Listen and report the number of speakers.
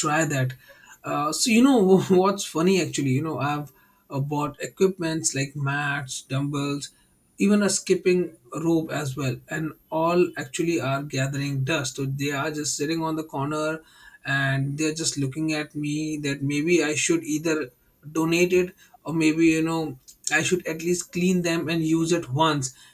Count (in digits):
1